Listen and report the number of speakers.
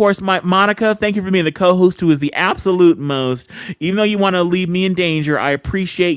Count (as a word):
one